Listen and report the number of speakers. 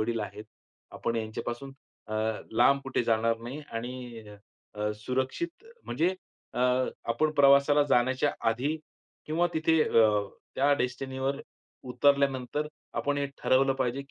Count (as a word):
one